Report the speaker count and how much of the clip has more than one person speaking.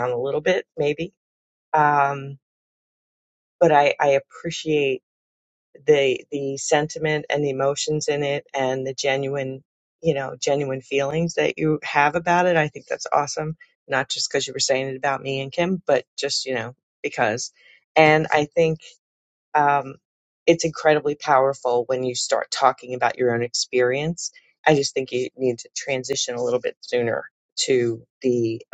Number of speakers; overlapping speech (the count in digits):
1, no overlap